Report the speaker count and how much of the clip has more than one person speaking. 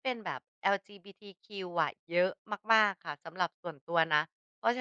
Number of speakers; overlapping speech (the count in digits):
1, no overlap